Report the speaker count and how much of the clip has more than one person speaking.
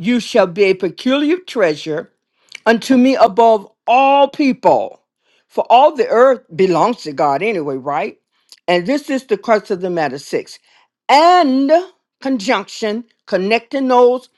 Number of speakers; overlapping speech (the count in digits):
1, no overlap